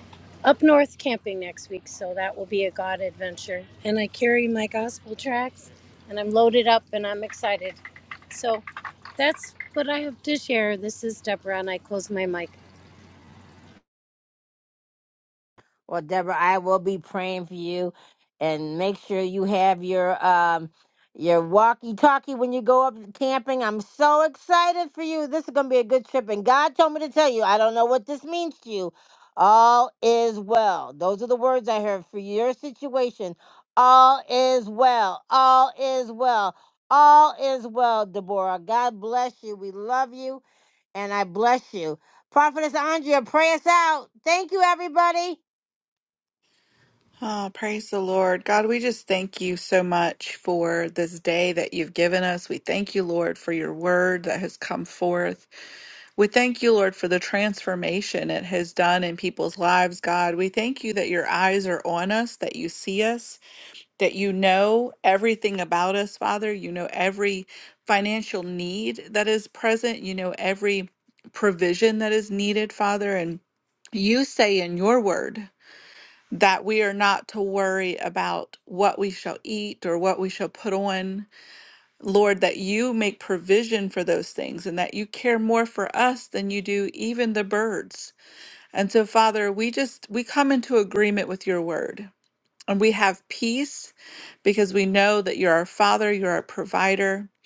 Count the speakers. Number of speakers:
three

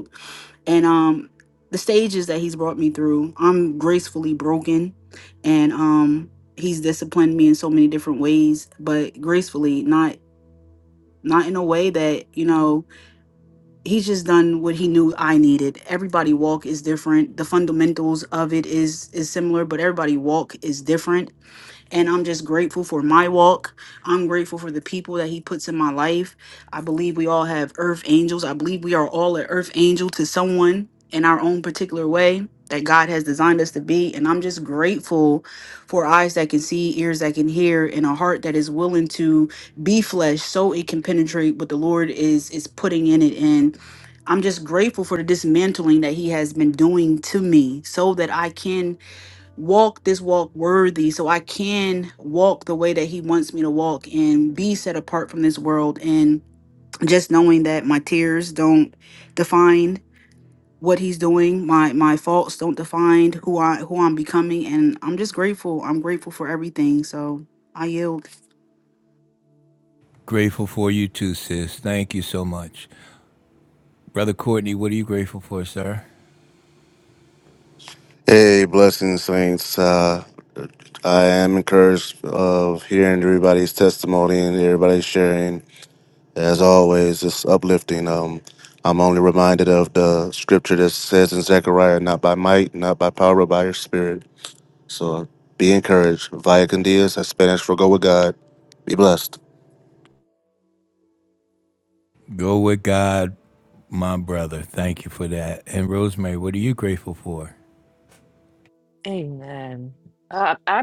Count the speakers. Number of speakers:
four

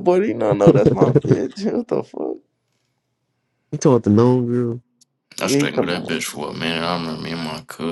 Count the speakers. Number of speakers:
three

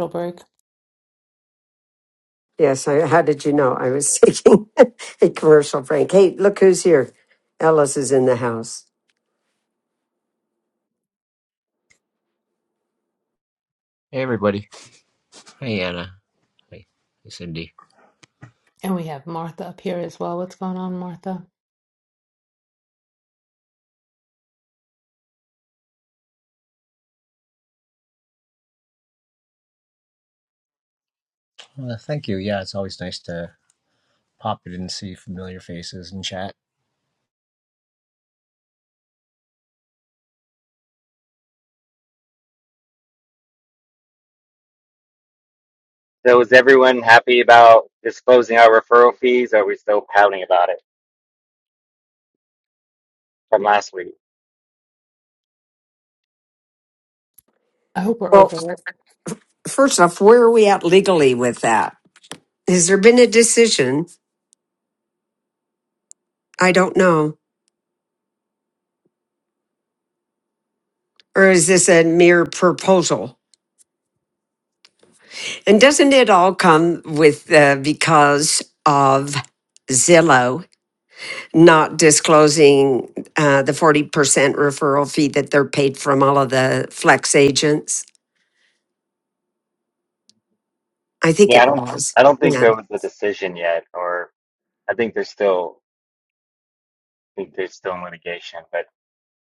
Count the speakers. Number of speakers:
four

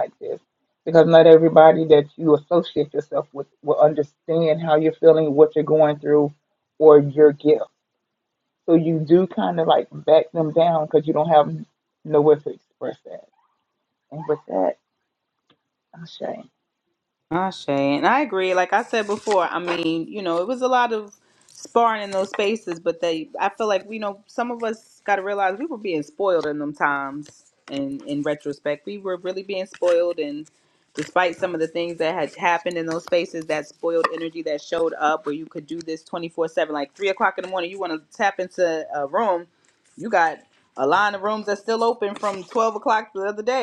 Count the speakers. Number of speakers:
two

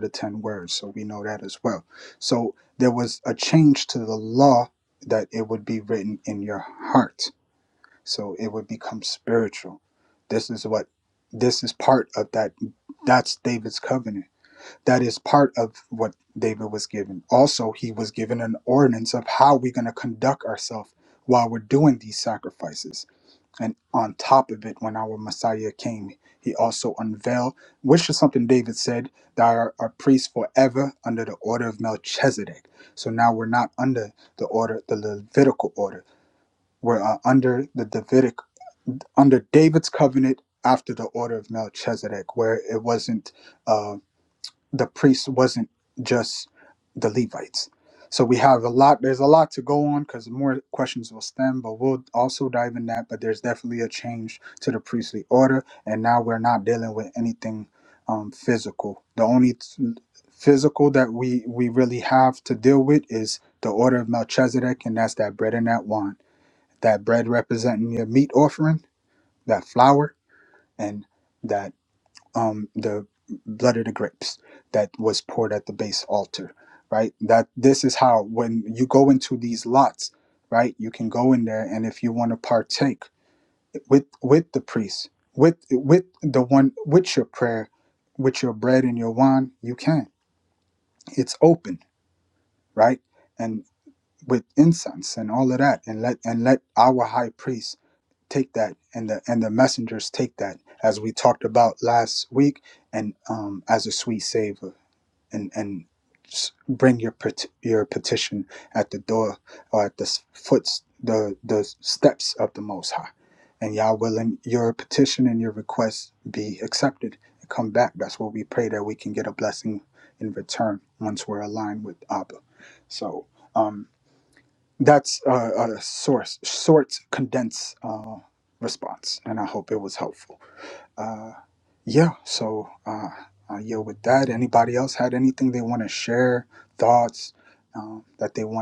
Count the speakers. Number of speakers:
one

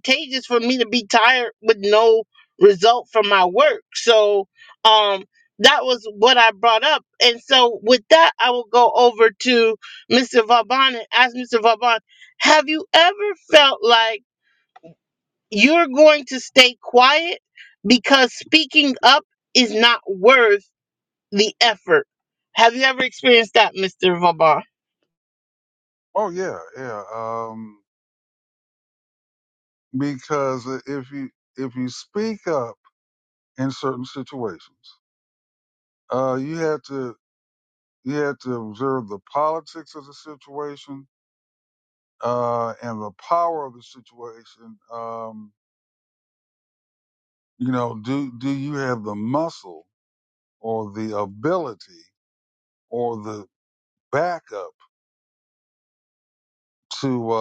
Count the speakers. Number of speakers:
two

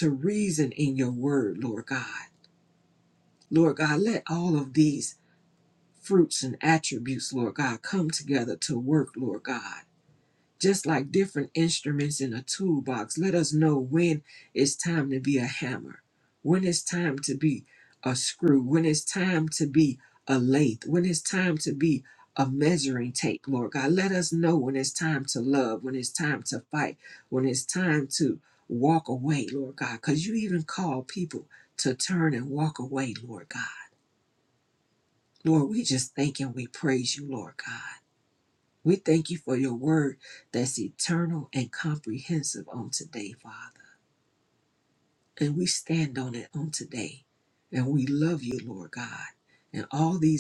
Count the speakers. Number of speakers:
one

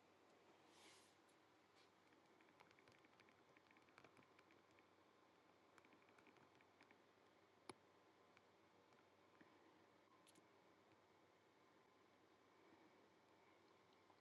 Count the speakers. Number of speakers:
zero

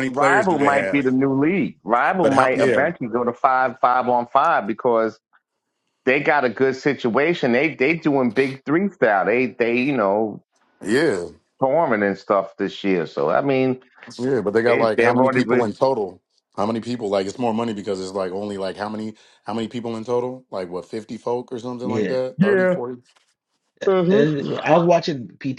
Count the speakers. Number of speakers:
three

